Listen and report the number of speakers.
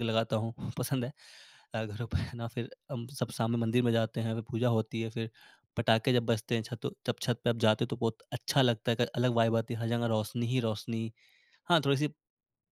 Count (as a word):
one